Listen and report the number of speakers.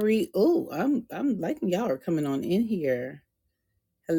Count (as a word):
one